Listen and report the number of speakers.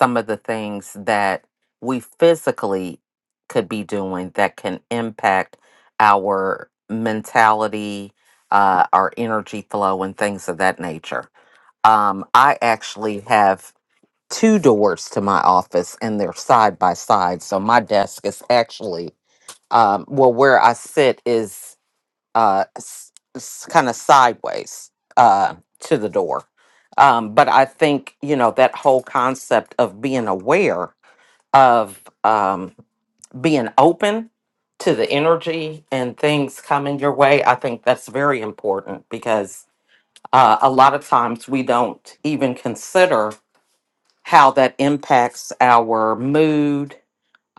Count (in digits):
1